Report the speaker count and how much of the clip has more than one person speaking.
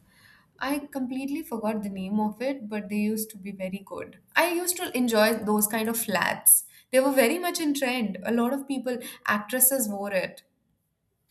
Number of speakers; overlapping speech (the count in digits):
1, no overlap